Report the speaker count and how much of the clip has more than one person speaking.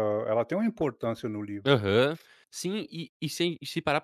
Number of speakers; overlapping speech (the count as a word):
two, no overlap